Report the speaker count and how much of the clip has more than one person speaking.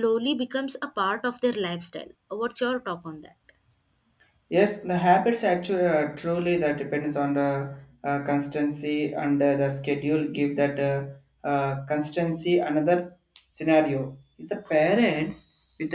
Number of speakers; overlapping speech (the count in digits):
2, no overlap